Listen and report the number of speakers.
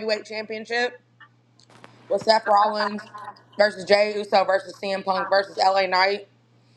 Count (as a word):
one